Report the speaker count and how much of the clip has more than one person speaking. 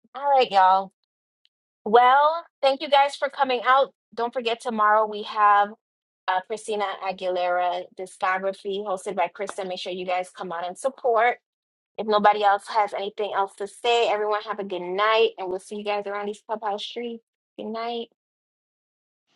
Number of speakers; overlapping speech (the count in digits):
1, no overlap